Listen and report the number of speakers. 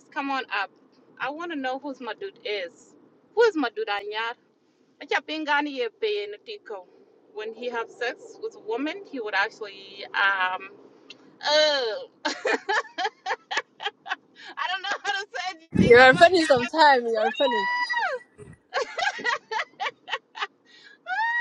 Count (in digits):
2